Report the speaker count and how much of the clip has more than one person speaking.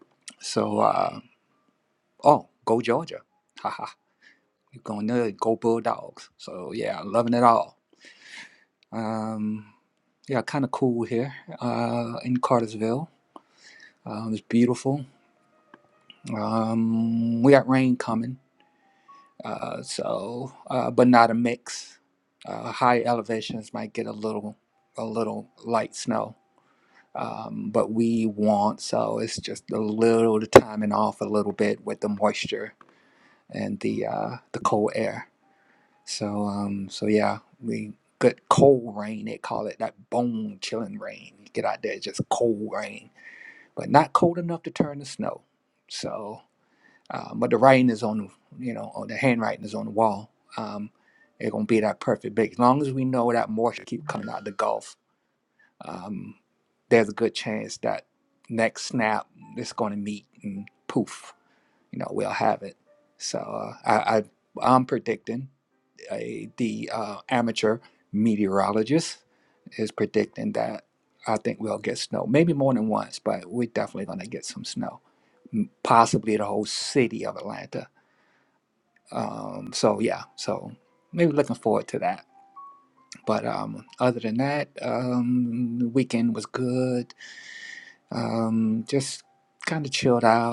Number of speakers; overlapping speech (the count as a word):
one, no overlap